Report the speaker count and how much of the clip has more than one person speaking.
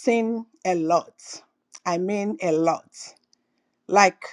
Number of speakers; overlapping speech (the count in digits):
1, no overlap